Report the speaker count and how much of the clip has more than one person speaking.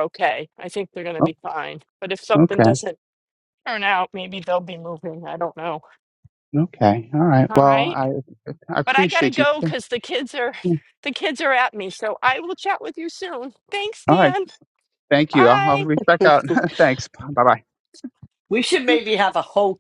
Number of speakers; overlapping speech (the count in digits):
3, about 12%